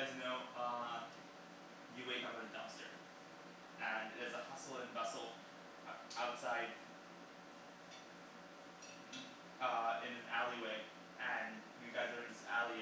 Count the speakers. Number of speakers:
1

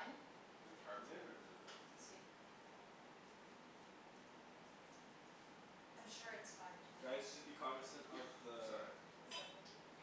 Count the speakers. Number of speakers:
3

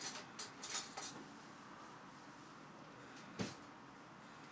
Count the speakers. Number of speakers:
0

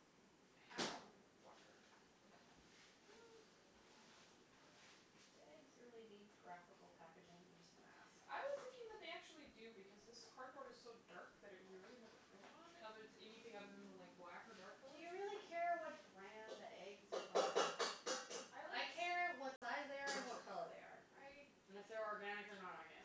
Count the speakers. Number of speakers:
2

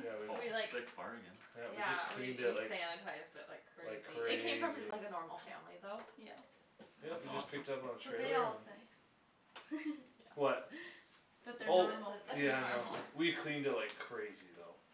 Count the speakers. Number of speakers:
4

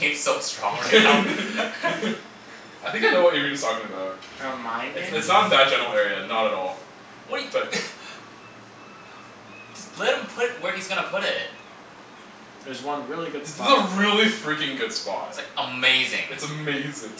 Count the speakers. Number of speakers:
3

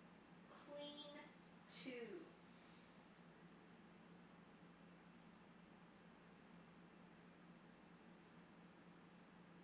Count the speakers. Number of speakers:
1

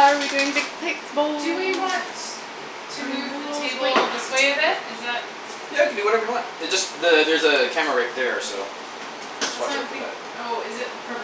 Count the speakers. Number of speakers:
3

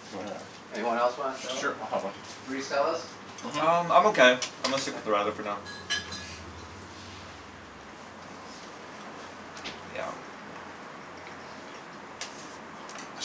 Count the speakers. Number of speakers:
3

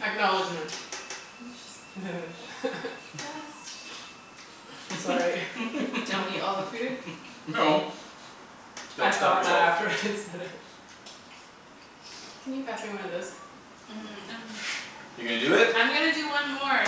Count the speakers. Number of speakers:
3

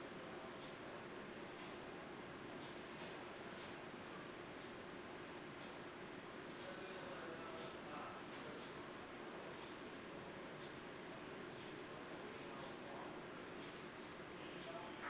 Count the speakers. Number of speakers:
0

